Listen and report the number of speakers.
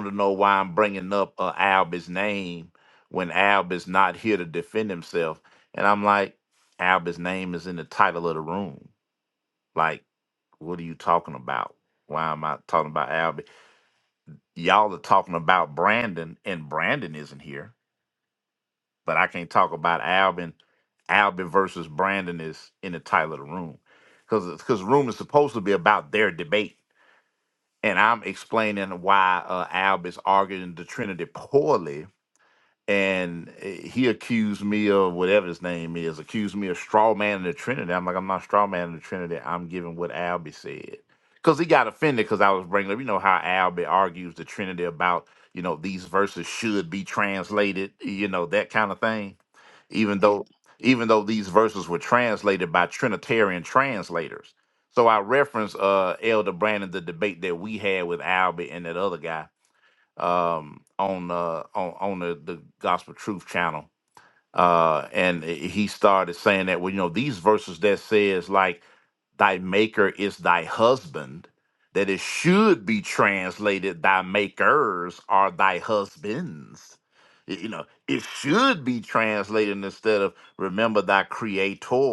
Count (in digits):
1